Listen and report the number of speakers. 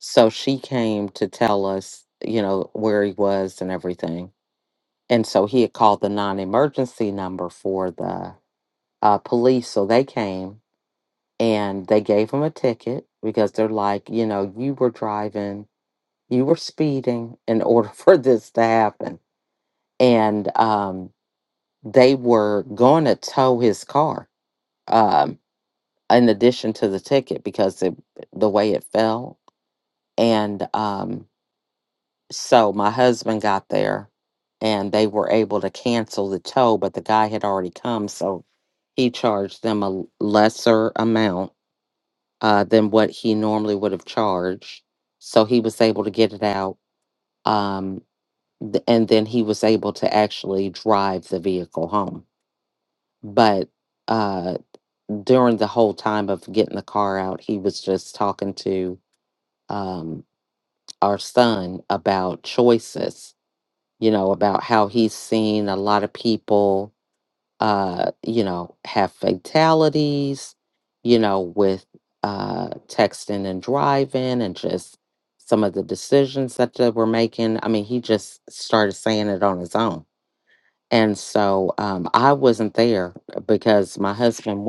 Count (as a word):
one